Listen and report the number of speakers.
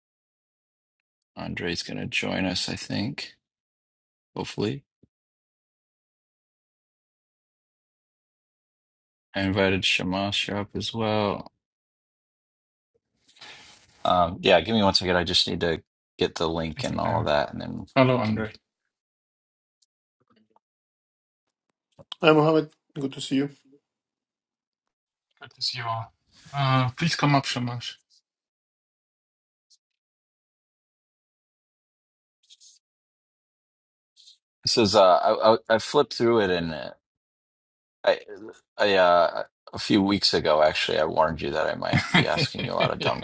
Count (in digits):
3